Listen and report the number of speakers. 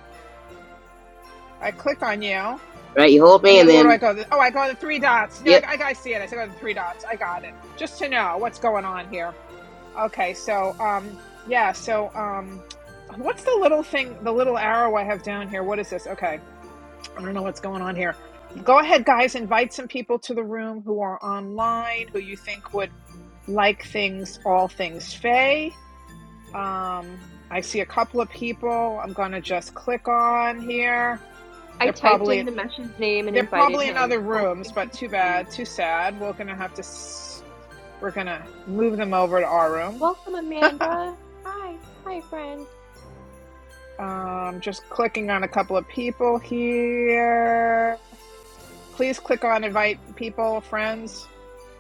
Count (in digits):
3